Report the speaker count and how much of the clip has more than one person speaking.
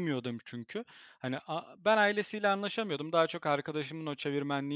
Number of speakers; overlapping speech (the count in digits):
1, no overlap